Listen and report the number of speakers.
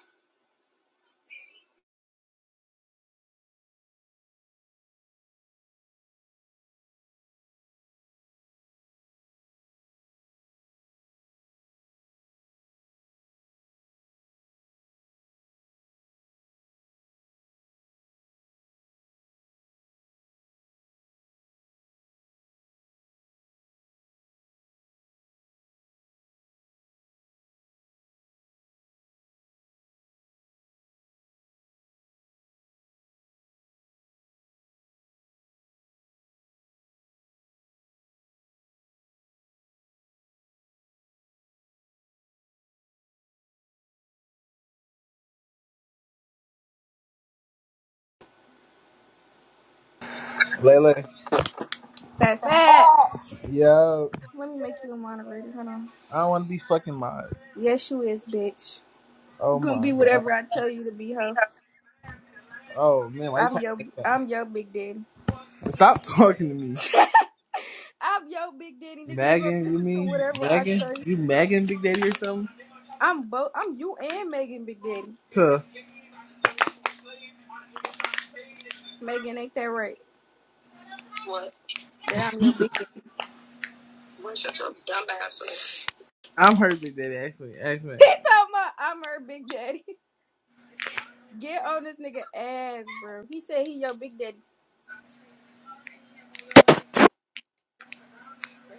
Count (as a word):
two